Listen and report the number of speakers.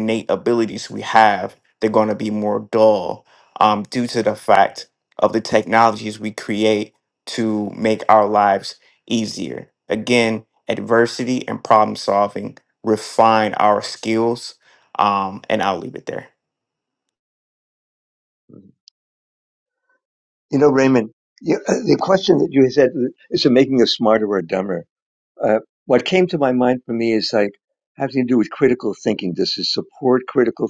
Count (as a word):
two